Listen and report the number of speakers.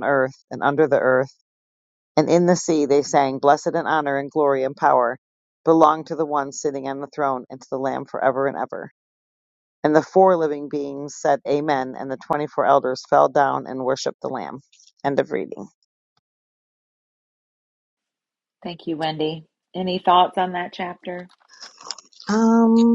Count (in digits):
2